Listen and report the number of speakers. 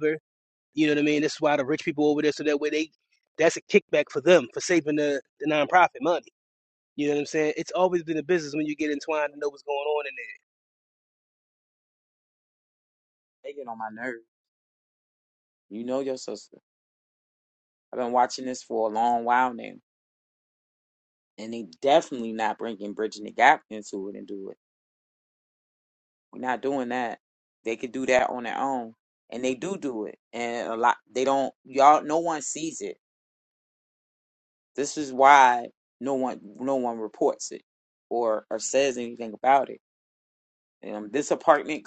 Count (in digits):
2